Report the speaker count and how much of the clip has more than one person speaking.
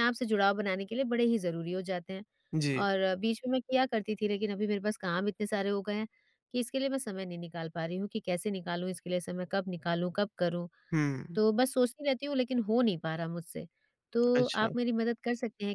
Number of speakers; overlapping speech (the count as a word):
two, about 3%